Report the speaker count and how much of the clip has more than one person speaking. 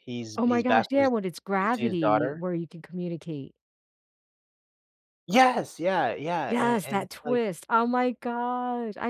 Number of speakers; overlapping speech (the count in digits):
2, about 26%